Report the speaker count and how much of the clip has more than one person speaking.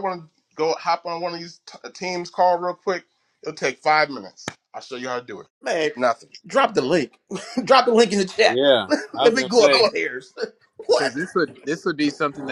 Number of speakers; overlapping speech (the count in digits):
3, about 9%